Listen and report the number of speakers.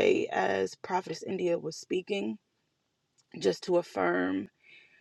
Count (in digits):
1